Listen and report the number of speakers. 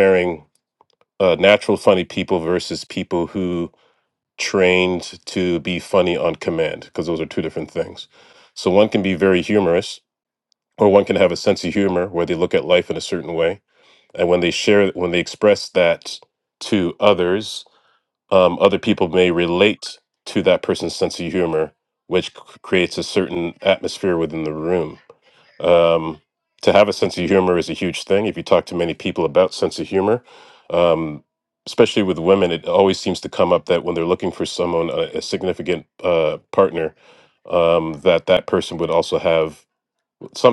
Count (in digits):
1